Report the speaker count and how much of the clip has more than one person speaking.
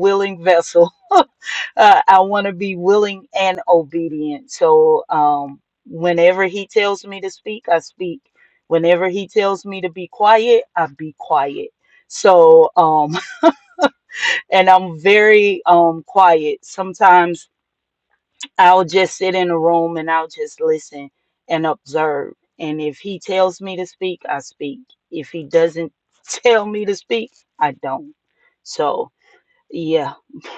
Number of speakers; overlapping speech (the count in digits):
1, no overlap